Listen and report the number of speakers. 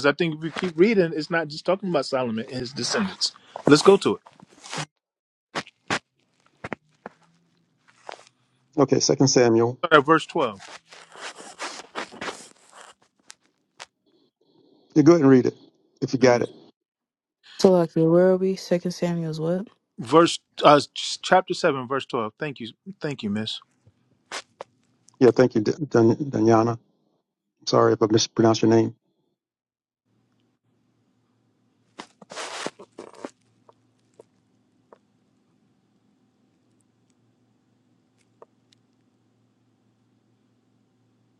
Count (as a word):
three